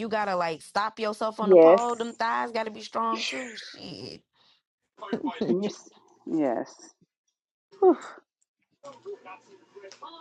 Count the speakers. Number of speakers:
2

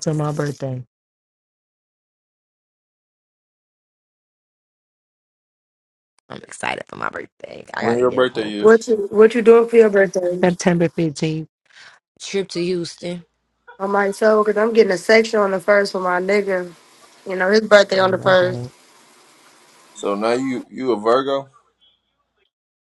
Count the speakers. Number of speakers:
3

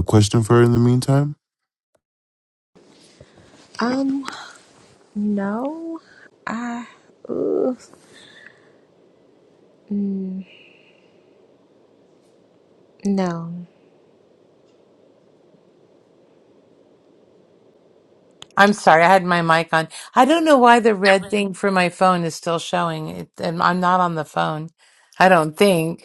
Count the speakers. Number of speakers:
3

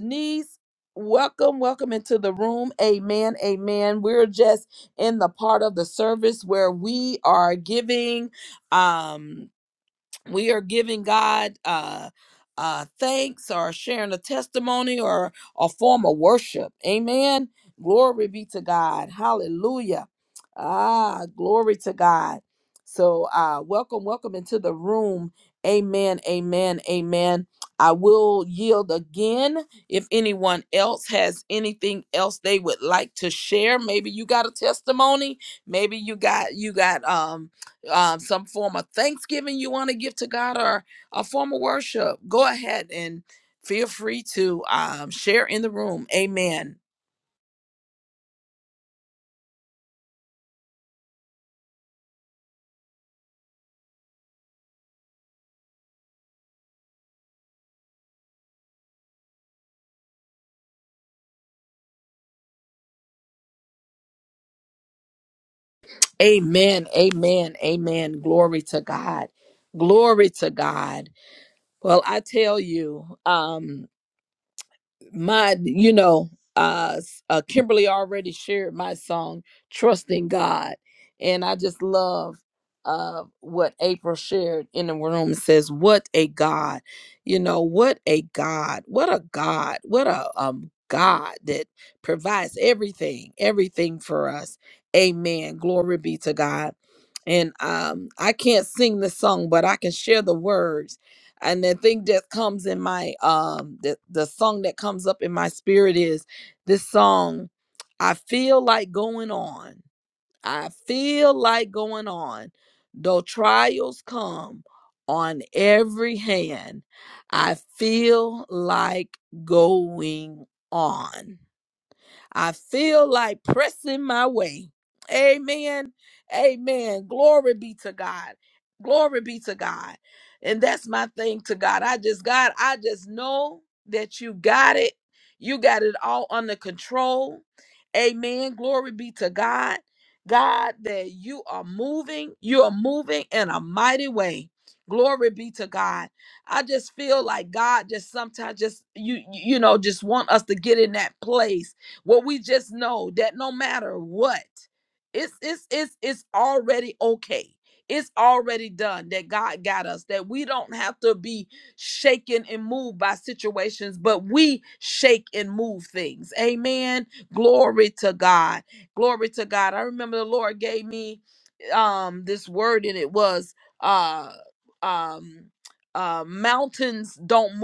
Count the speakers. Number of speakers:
1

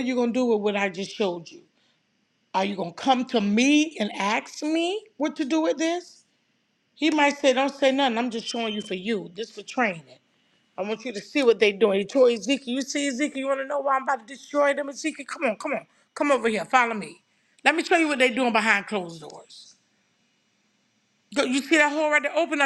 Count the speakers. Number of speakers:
1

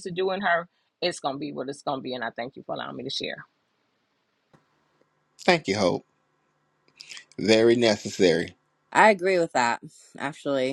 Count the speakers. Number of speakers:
3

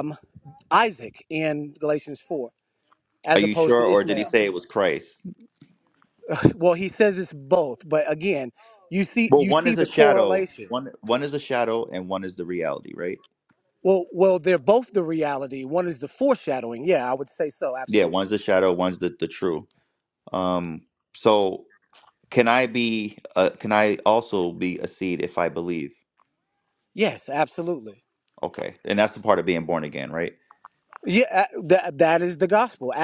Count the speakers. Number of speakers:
2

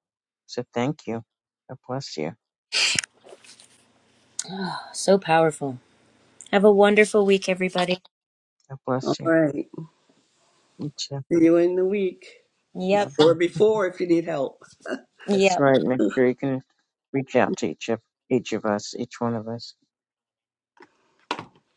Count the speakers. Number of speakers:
3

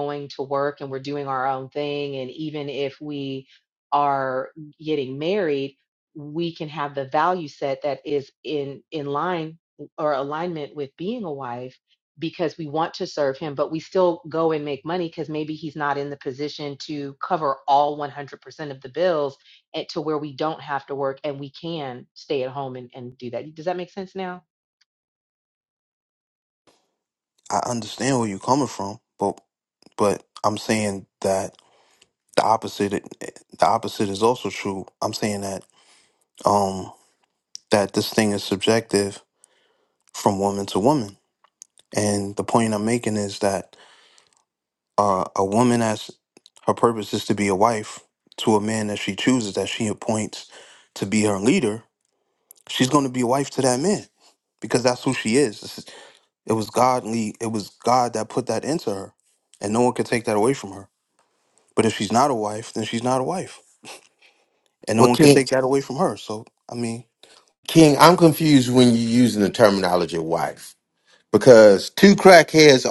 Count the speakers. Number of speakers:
3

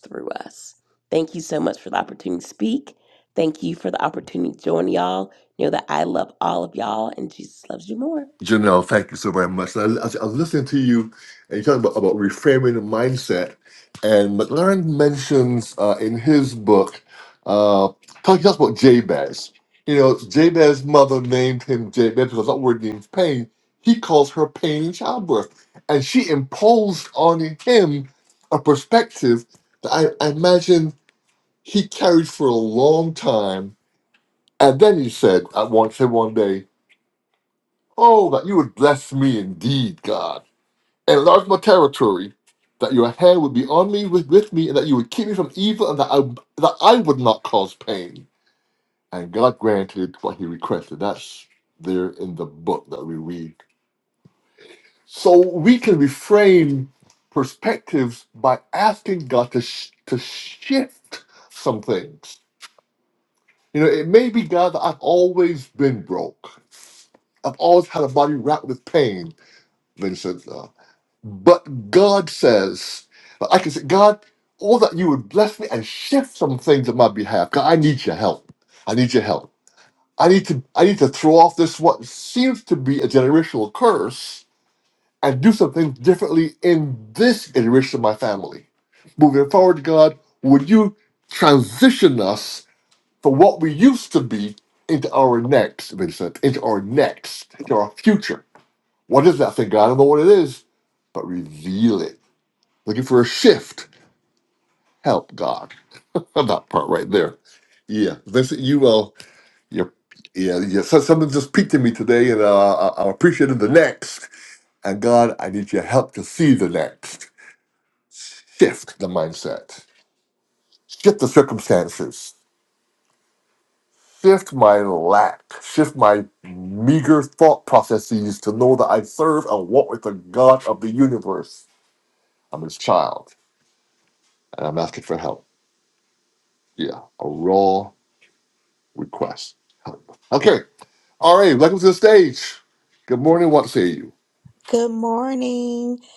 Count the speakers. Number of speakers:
3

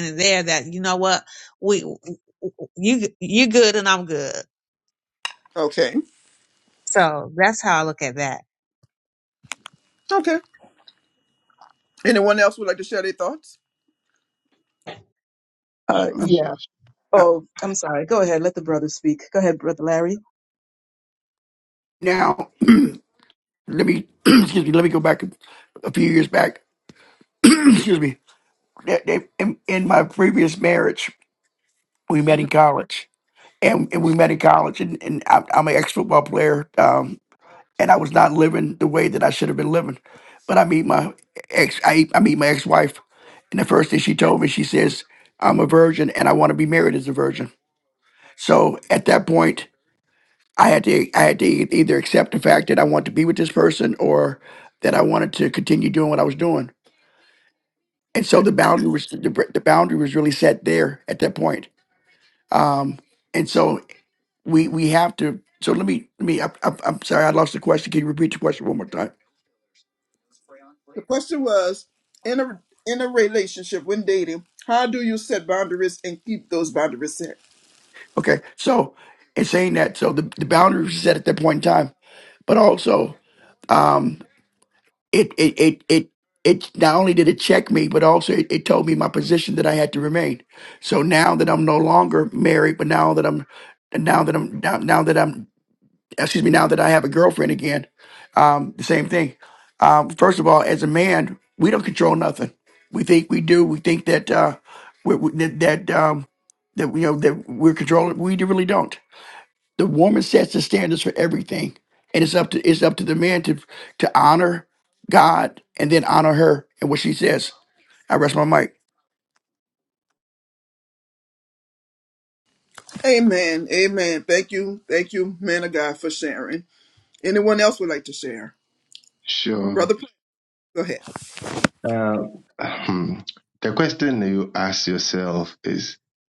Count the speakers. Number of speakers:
5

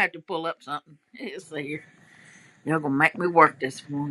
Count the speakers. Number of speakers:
1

